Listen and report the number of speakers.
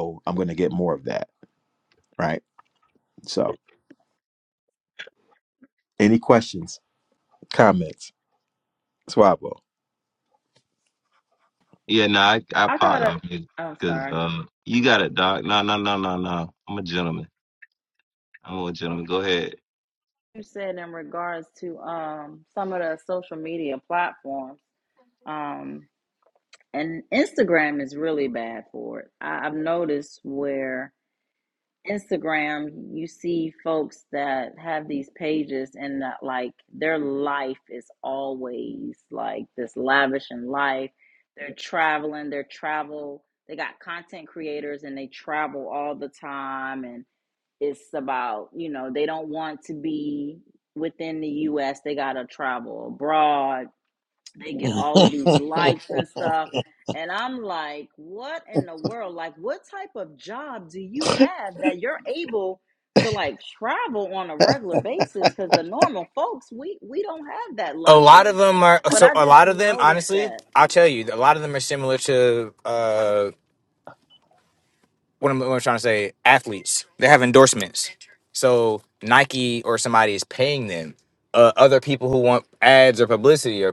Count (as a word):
four